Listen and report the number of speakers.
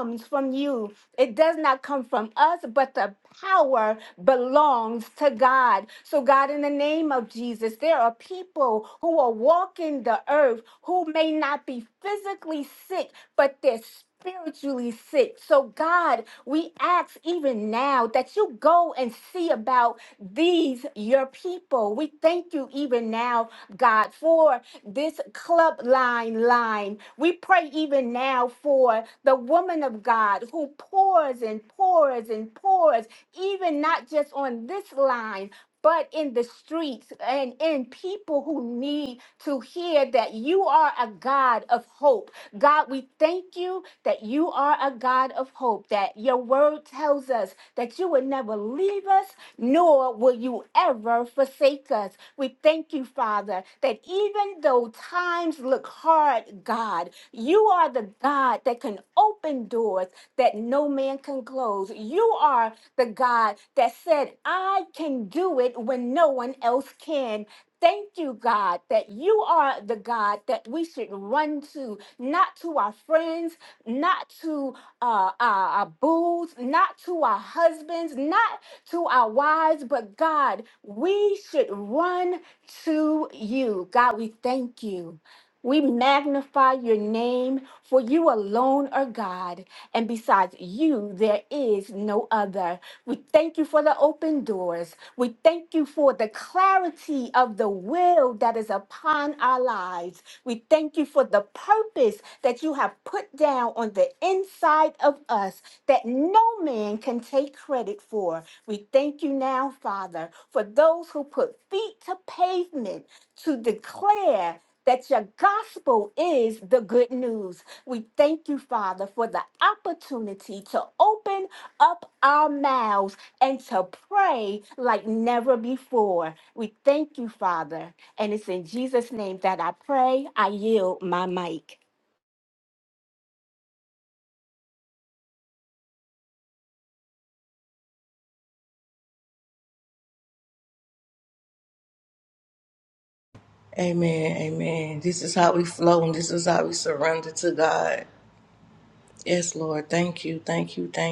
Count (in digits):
2